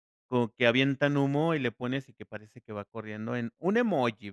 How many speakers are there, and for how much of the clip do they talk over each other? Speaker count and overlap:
one, no overlap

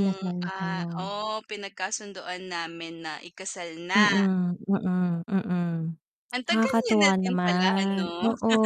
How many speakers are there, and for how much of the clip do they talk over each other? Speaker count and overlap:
two, about 32%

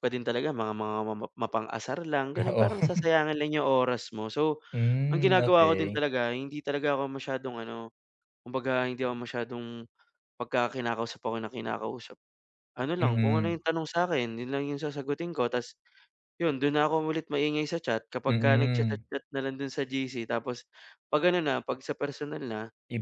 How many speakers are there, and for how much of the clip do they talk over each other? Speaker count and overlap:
two, about 11%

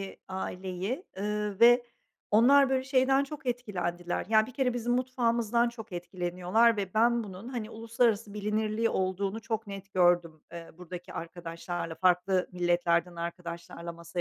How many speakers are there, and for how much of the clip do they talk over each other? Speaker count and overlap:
one, no overlap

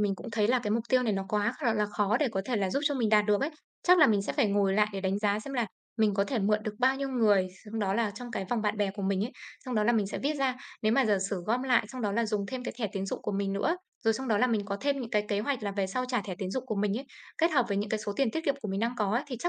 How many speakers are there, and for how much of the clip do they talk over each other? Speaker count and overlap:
one, no overlap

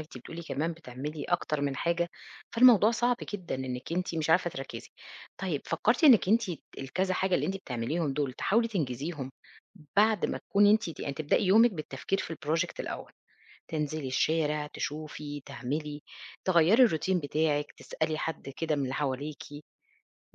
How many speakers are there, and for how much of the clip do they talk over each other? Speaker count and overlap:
one, no overlap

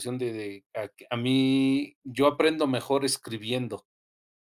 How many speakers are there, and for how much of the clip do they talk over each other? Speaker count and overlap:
one, no overlap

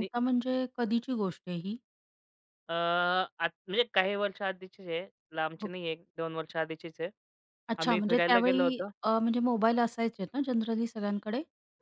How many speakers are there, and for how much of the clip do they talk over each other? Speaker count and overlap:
two, about 11%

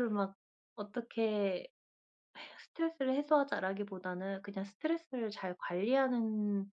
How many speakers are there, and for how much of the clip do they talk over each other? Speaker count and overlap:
one, no overlap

